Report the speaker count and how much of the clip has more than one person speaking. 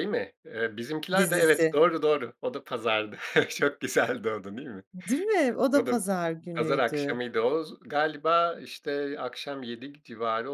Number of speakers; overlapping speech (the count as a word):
two, about 14%